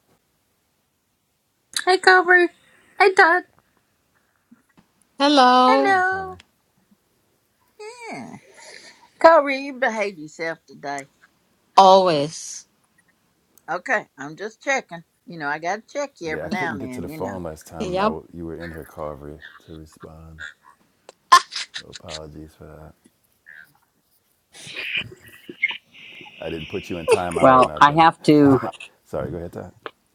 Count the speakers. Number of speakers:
four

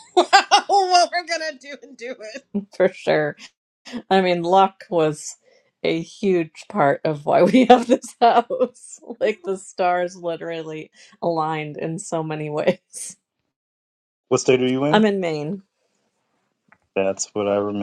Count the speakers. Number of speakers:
three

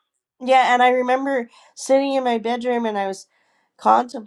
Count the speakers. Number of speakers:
one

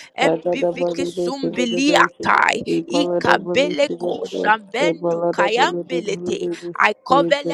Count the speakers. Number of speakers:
two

